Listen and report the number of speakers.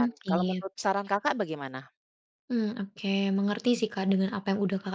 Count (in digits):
2